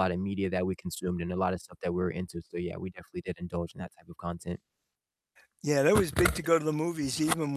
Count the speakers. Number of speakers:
2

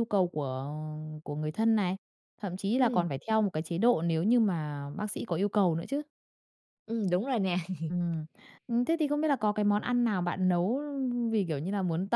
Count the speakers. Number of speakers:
2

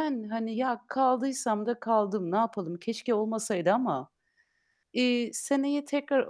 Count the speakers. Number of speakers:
1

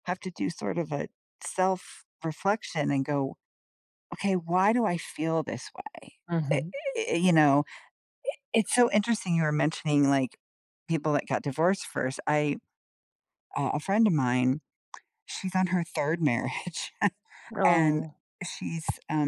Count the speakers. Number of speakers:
2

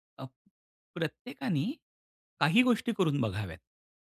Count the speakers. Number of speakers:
1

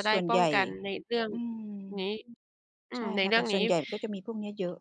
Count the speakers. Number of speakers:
2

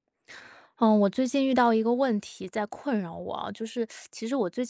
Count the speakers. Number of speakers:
1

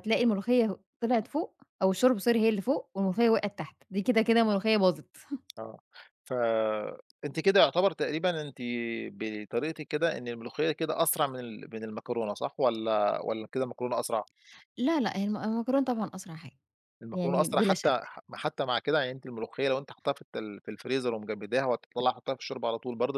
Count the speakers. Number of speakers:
2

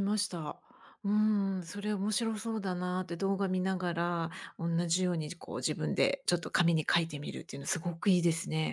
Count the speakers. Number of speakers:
1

